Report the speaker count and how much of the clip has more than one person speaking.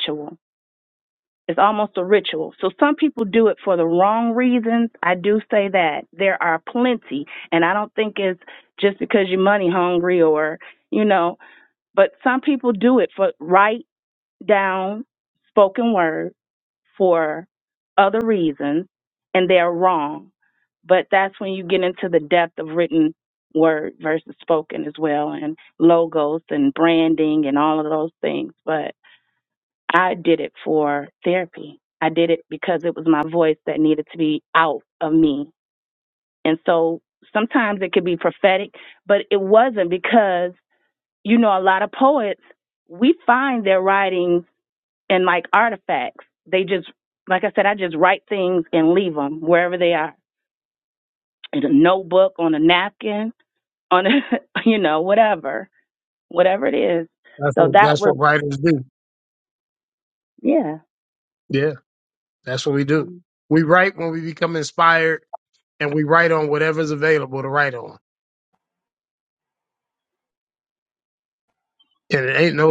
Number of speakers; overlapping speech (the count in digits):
2, about 1%